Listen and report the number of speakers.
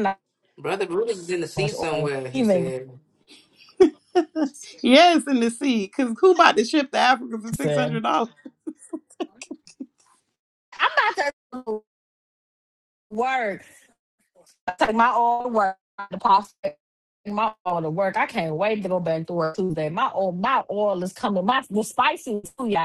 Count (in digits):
3